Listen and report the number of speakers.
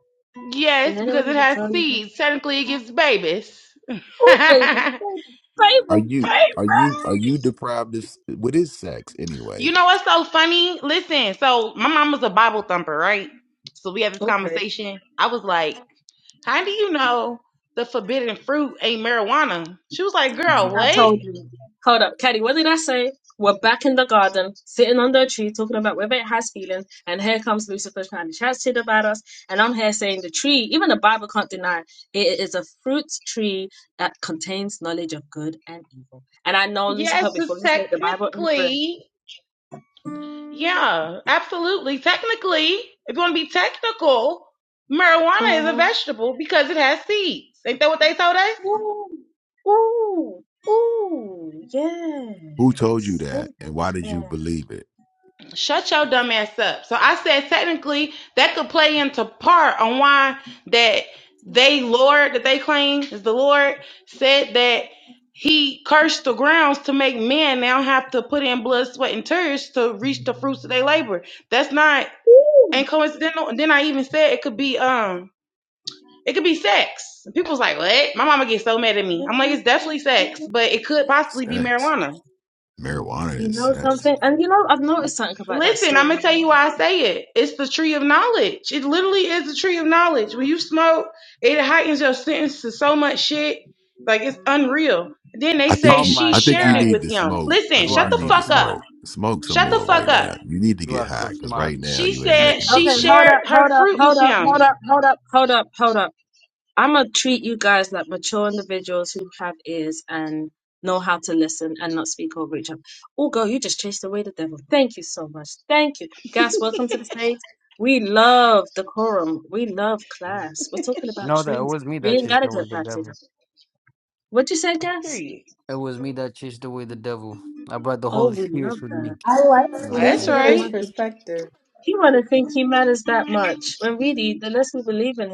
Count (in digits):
5